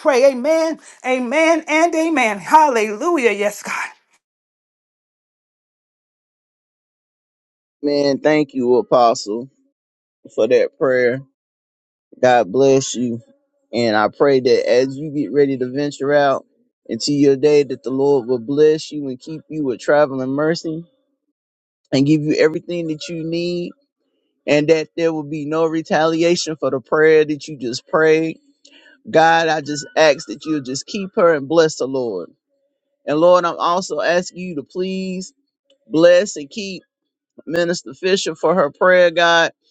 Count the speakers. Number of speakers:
2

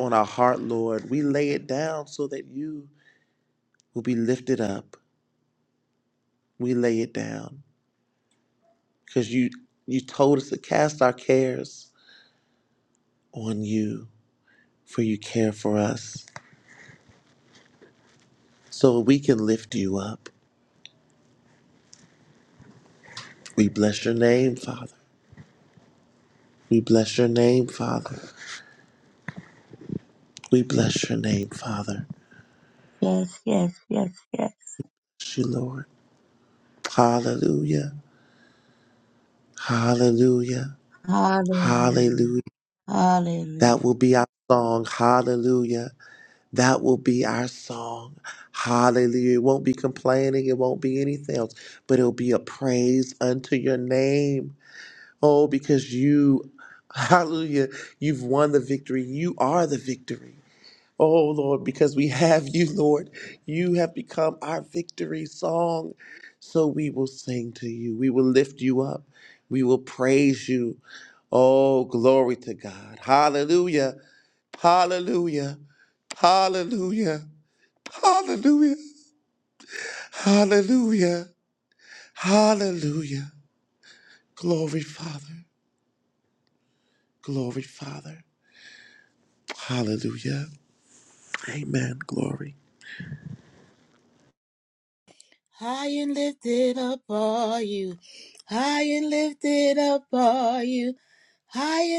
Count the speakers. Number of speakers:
3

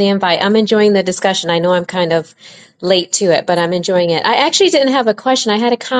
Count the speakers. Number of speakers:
1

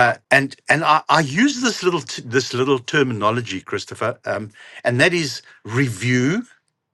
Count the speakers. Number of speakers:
1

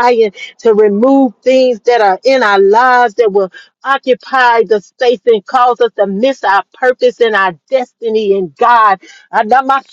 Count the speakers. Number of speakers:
1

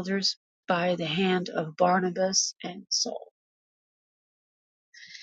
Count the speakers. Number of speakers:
1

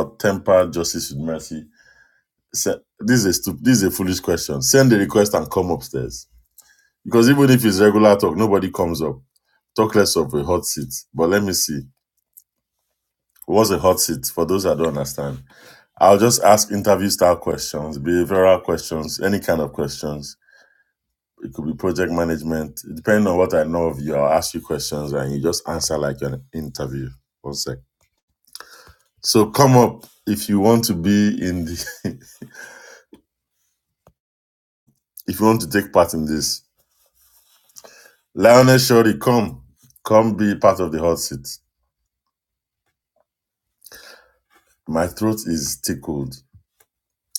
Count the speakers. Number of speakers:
1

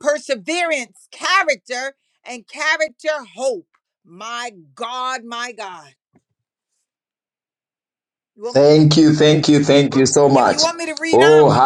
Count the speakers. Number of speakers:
2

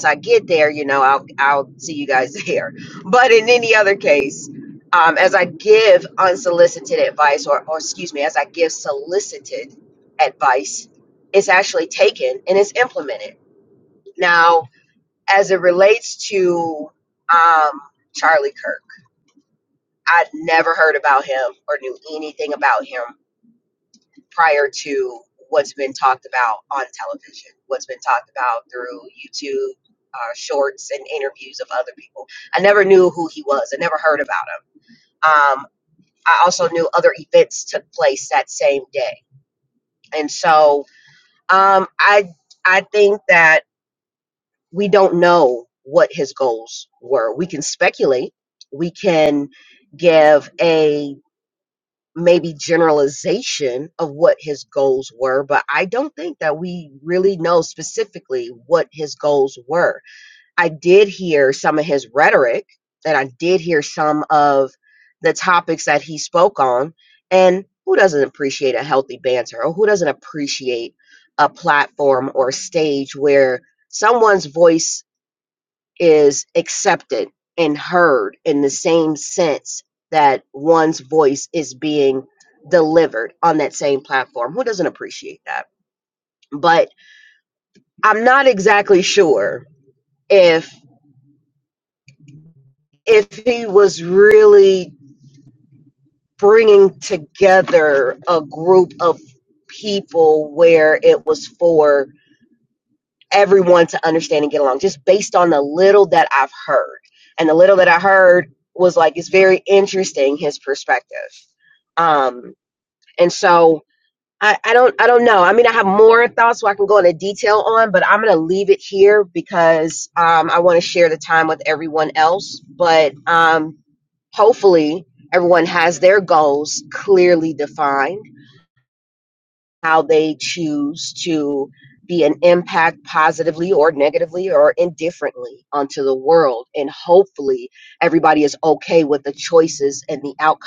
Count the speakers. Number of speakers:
1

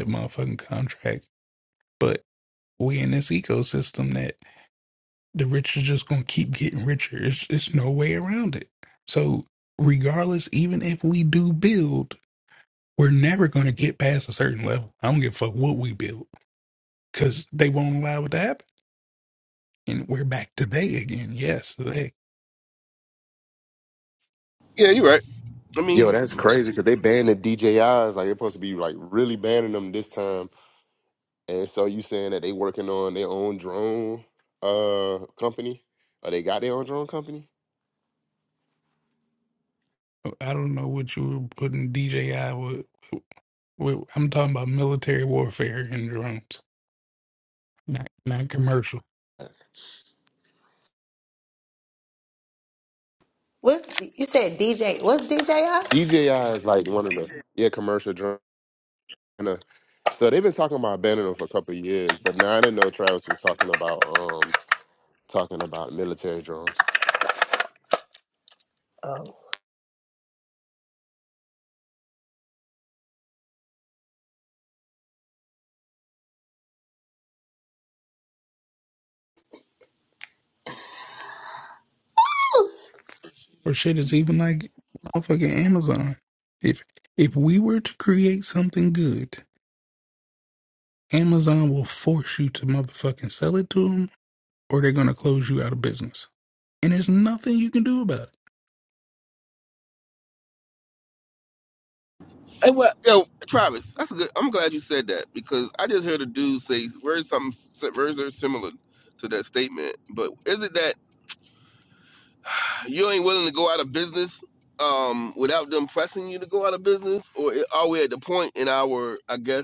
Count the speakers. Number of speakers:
4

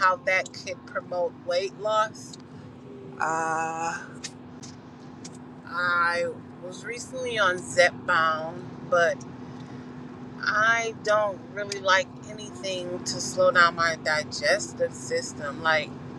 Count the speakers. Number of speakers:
1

